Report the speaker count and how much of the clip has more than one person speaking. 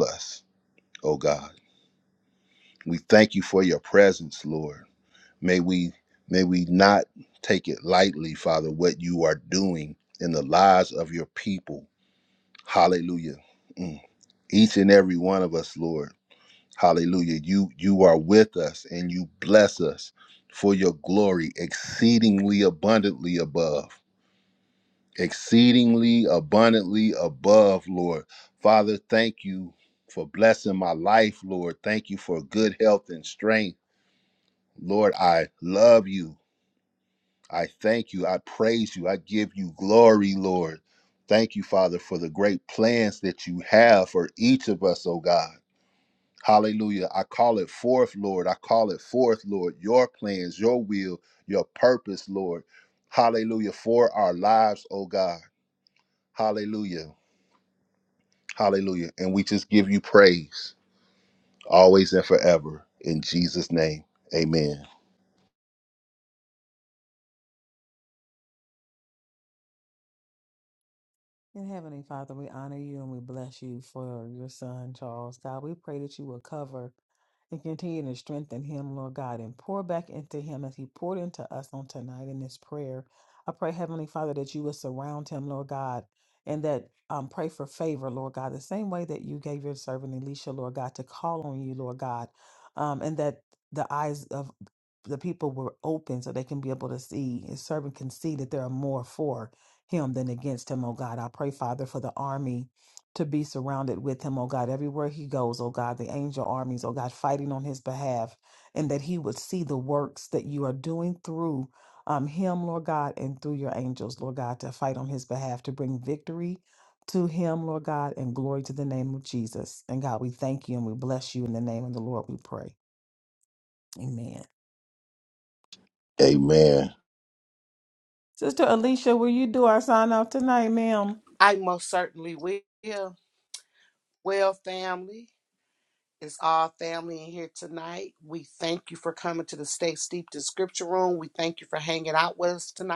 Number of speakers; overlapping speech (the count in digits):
3, no overlap